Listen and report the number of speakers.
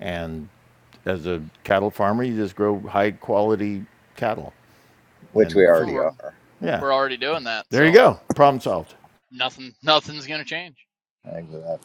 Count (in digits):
3